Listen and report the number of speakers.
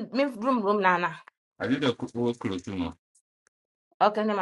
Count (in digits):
2